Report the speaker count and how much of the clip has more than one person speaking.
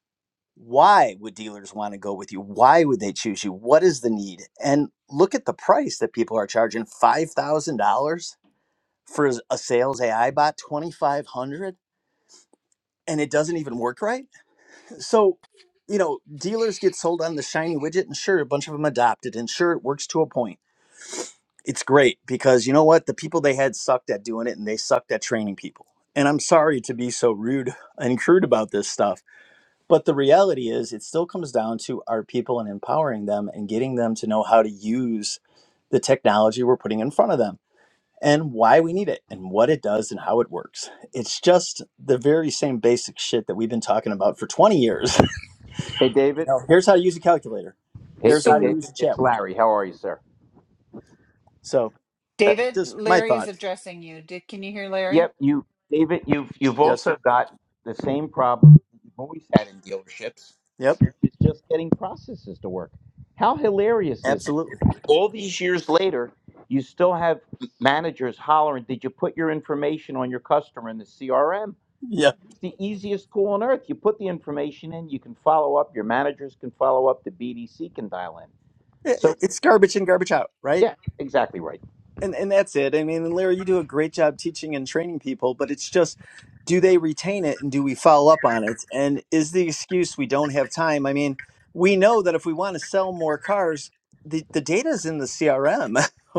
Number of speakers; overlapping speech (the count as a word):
three, about 3%